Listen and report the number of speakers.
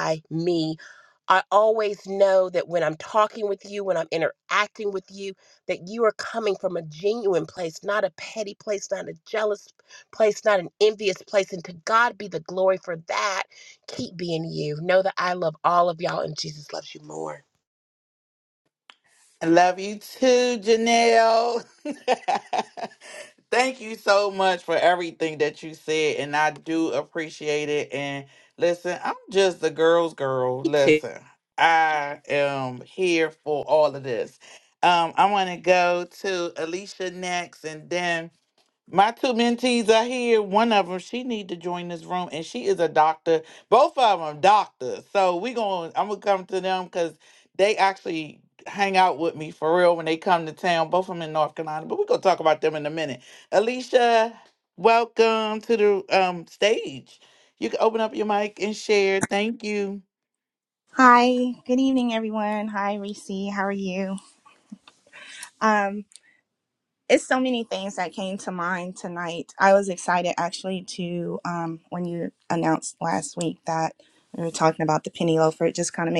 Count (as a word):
three